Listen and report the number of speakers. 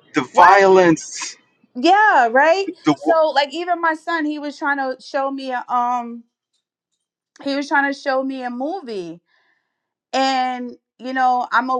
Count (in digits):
2